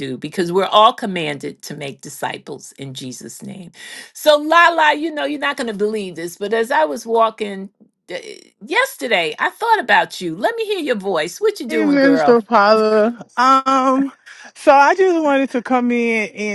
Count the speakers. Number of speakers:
2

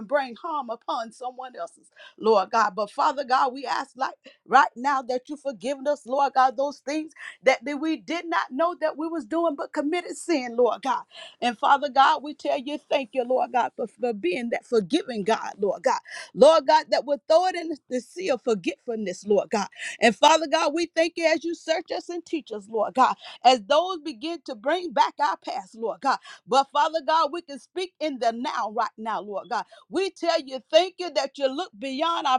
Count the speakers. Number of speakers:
1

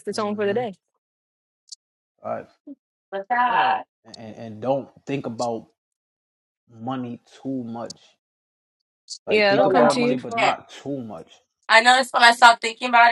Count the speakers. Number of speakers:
3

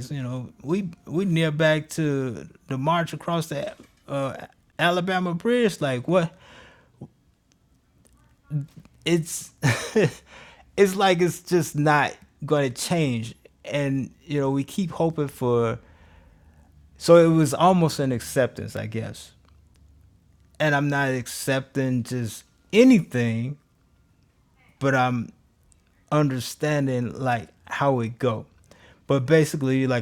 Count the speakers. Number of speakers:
1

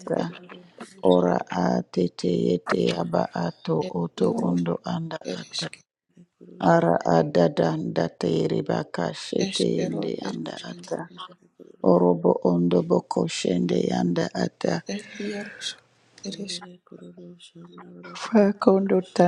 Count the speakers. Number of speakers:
3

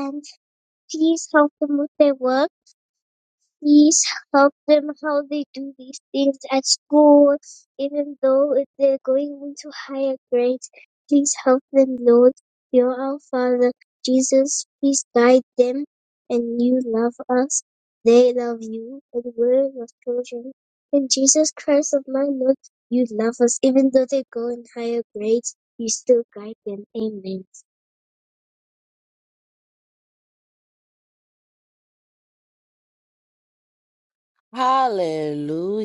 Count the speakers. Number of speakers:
2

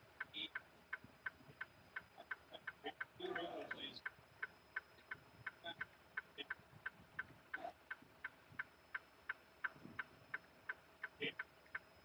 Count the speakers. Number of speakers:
0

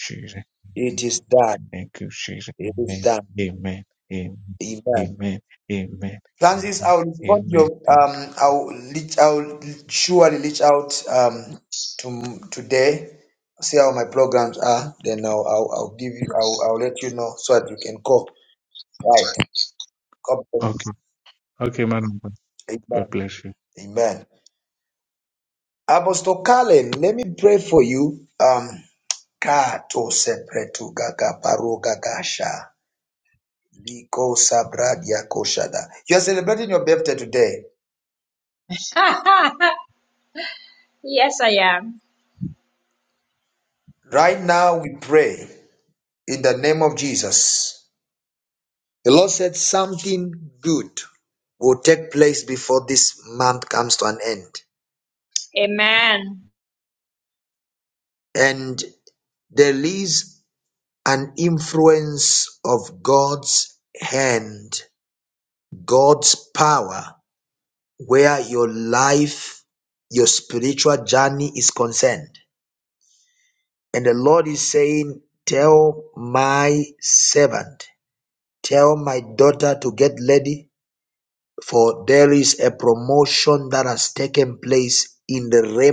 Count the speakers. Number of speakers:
3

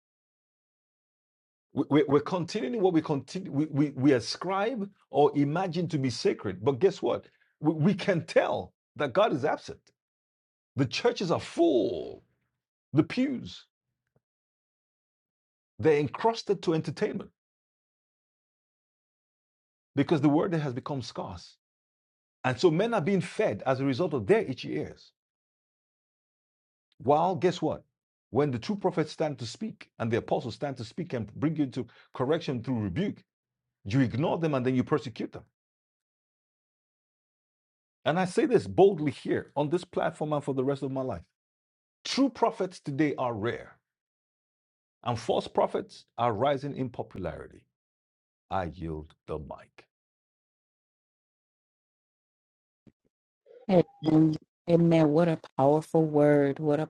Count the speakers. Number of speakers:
2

